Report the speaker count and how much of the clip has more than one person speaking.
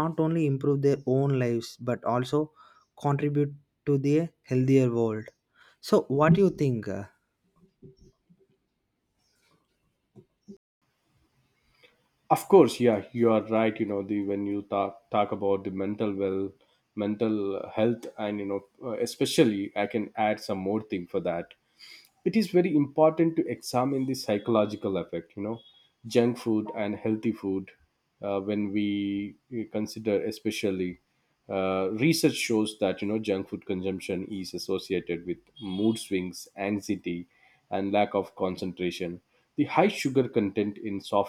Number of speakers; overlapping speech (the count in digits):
2, no overlap